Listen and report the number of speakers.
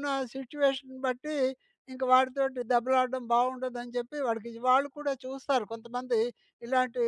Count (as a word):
one